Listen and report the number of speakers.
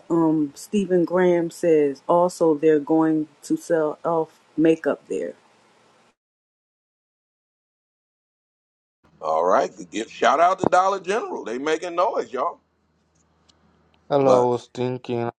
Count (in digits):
3